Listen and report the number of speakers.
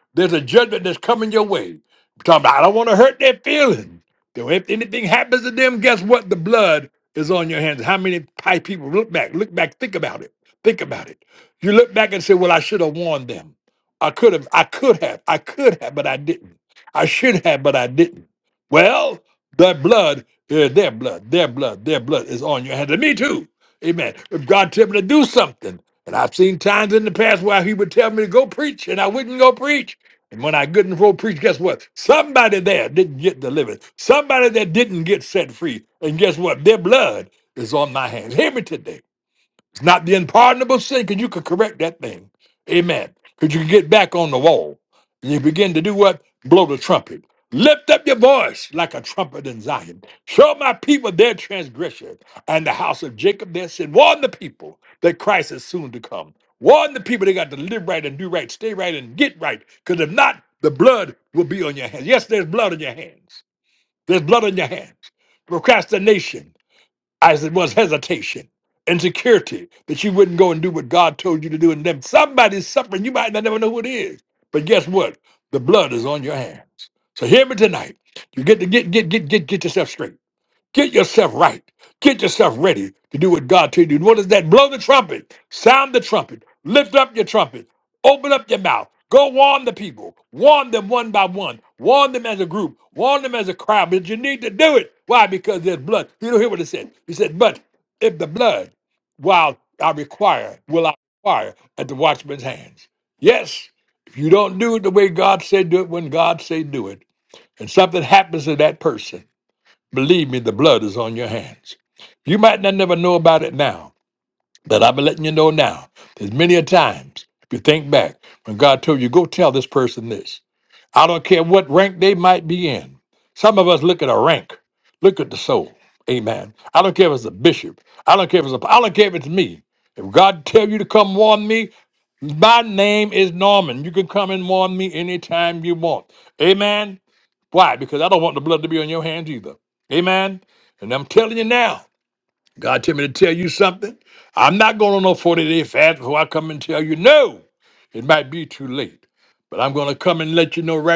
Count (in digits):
1